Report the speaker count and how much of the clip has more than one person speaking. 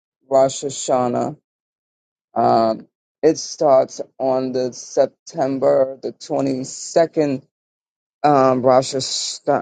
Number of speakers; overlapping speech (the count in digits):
1, no overlap